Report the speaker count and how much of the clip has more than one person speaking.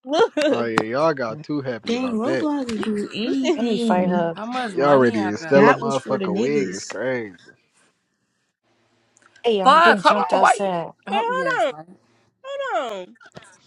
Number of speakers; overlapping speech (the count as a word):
five, about 39%